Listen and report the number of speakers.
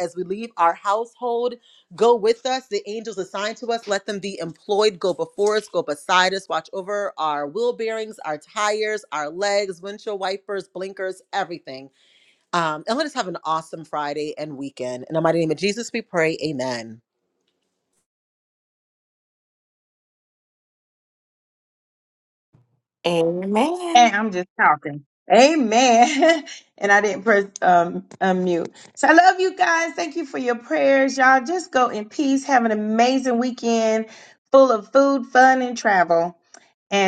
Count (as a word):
three